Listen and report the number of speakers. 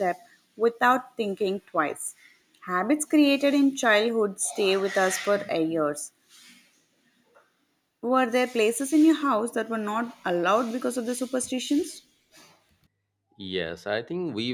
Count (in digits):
2